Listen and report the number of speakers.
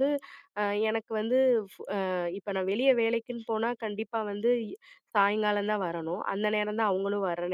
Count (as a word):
one